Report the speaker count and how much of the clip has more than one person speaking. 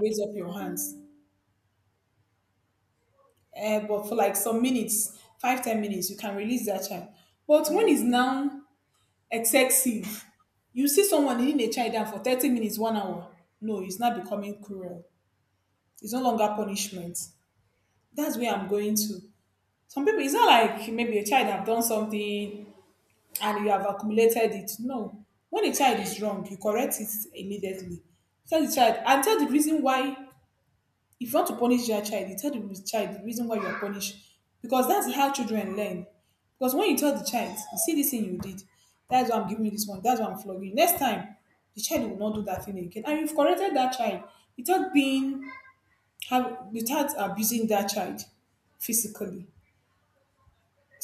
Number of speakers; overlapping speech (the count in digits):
1, no overlap